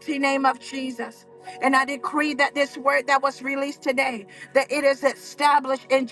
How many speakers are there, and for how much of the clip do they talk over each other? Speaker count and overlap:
1, no overlap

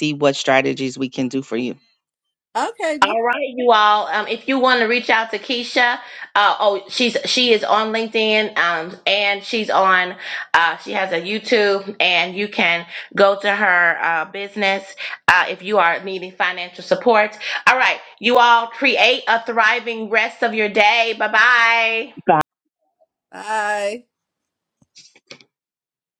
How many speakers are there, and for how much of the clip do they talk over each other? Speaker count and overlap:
3, about 1%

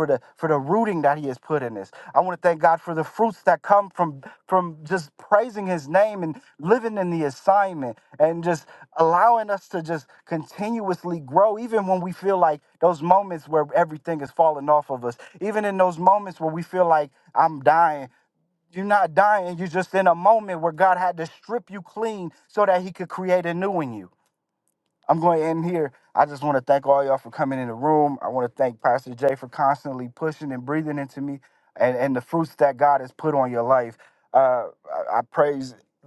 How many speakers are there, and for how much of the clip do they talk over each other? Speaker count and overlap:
1, no overlap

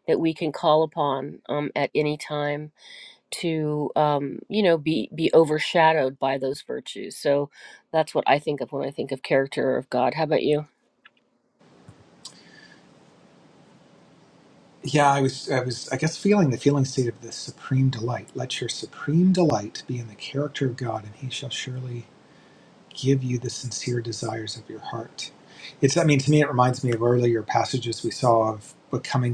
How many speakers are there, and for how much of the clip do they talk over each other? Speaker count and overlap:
2, no overlap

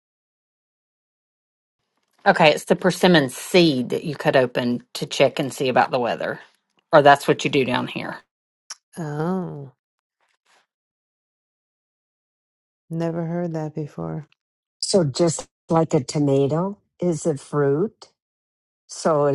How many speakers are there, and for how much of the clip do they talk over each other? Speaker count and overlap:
3, no overlap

